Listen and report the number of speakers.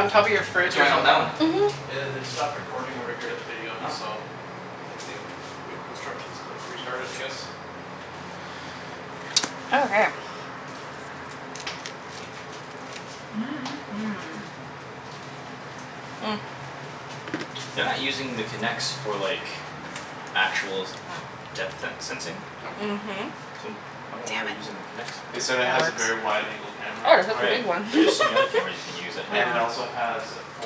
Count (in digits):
4